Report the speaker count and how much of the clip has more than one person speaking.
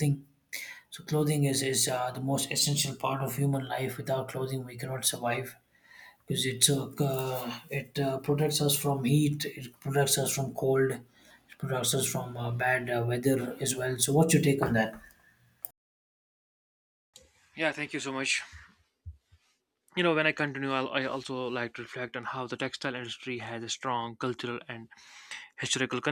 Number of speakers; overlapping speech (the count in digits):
2, no overlap